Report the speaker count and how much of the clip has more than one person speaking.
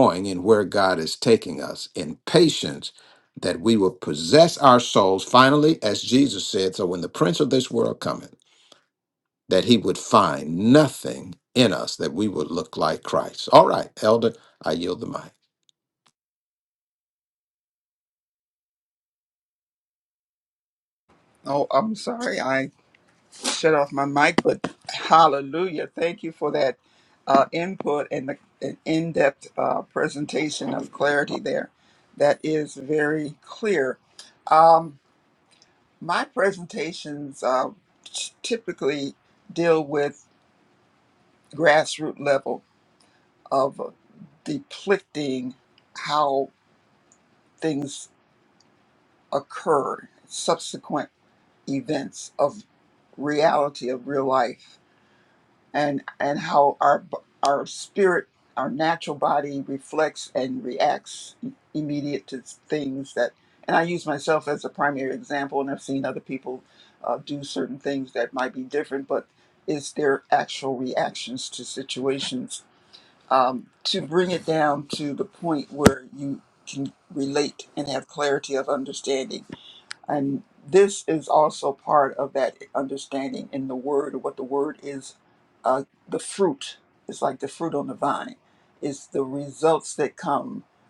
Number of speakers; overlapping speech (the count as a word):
two, no overlap